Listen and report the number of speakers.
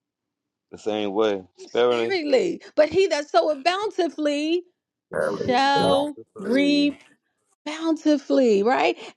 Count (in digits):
2